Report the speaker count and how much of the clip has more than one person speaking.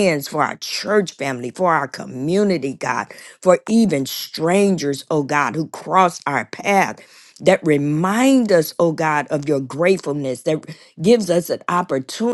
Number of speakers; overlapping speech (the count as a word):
one, no overlap